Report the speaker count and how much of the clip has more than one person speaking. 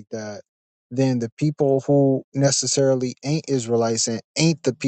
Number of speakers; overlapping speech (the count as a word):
one, no overlap